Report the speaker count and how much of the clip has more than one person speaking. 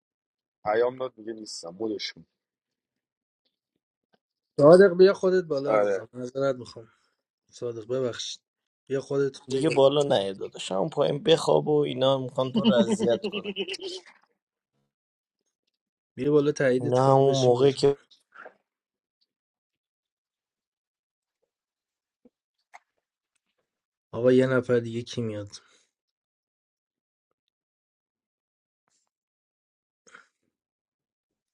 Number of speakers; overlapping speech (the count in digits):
3, about 5%